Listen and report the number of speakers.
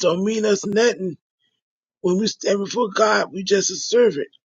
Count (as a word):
one